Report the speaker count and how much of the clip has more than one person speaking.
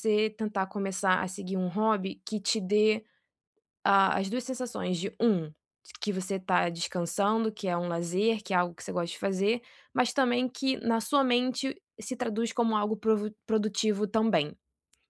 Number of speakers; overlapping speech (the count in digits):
1, no overlap